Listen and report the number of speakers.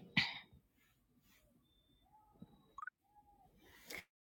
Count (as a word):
zero